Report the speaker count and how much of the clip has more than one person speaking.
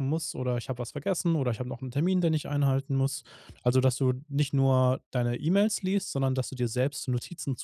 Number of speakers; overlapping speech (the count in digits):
1, no overlap